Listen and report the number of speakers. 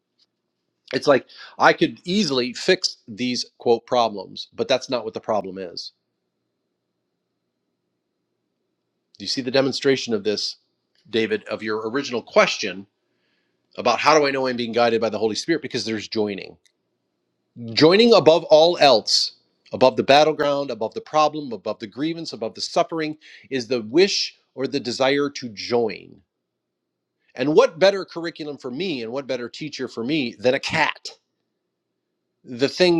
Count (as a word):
one